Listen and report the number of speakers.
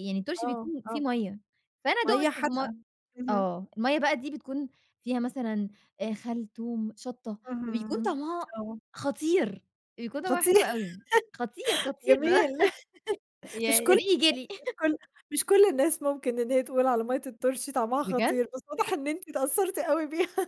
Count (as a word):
two